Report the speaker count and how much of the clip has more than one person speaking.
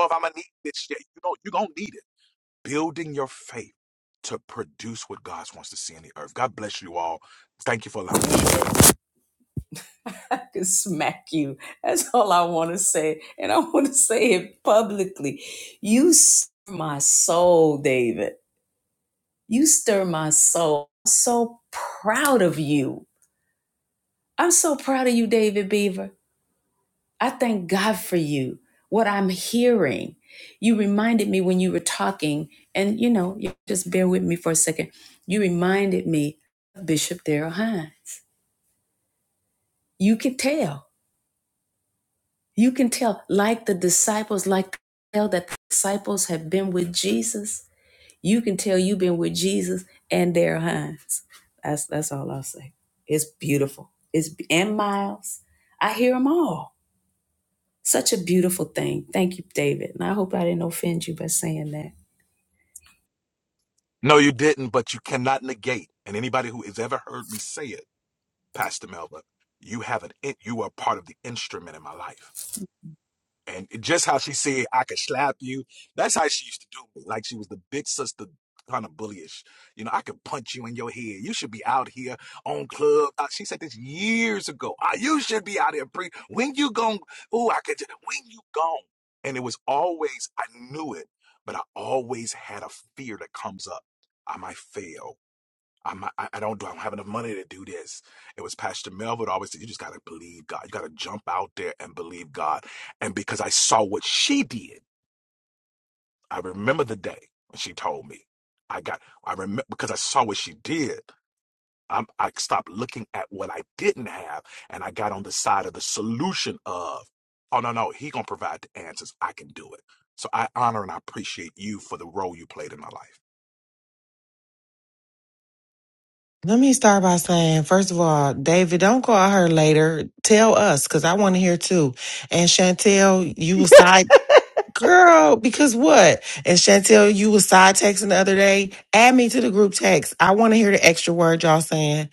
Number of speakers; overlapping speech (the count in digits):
3, no overlap